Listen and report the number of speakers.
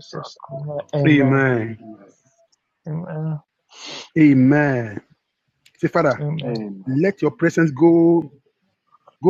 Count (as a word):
three